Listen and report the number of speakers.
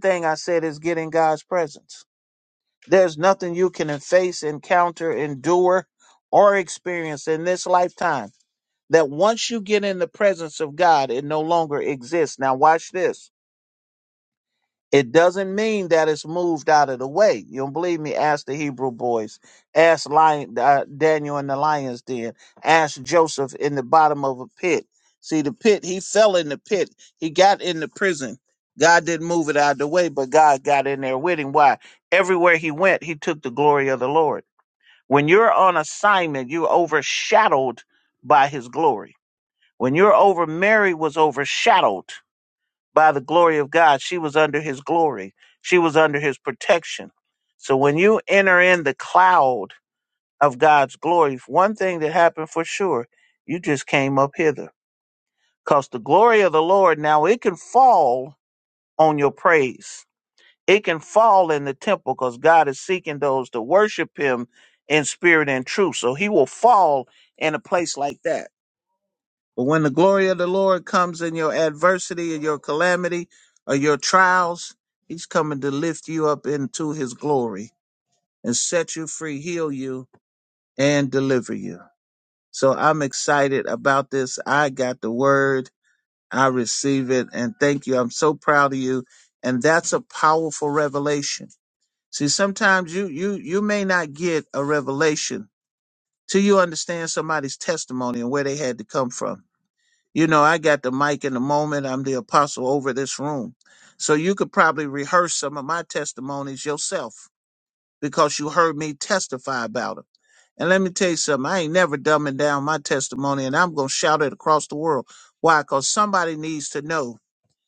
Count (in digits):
1